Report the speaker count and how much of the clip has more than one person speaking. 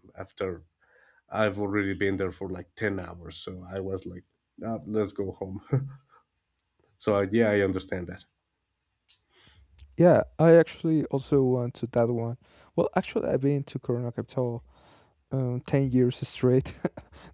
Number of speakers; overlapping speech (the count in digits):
2, no overlap